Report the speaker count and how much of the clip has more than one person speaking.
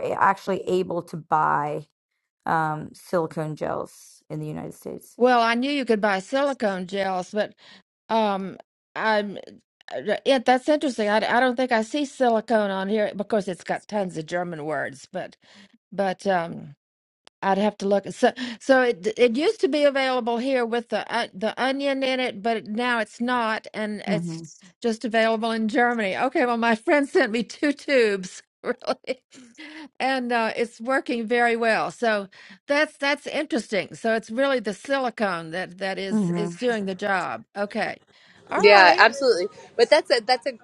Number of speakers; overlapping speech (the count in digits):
3, about 3%